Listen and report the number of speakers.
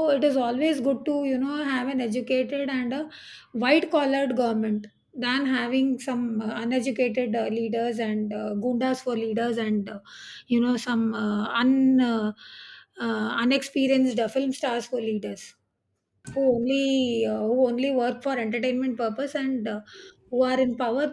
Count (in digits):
1